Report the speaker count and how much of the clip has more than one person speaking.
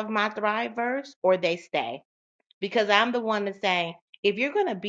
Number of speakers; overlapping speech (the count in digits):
1, no overlap